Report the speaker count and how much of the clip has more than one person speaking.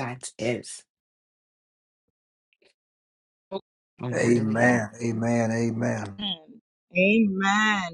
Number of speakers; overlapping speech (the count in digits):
3, about 9%